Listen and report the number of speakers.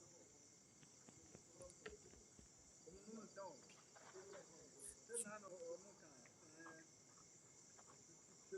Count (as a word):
zero